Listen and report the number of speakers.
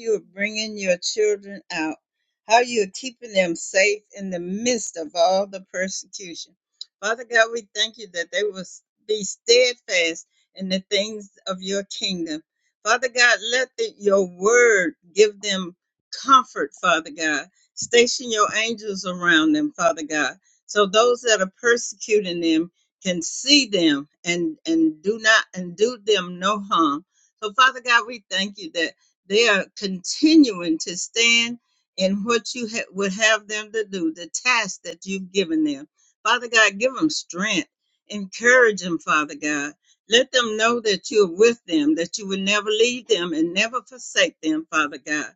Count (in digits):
1